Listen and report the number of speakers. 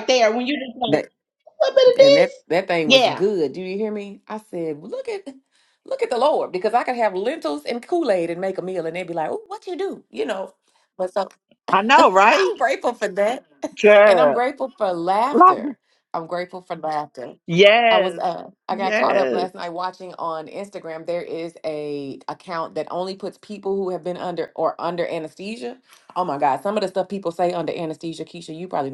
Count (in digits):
3